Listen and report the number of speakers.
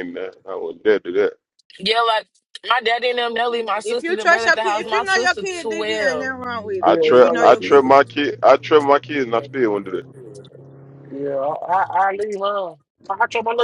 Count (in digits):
4